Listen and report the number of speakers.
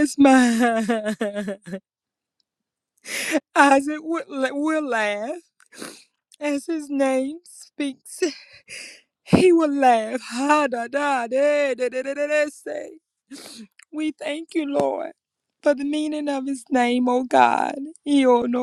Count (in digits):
1